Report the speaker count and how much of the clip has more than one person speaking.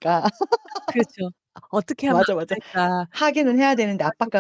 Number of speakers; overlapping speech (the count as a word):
two, about 30%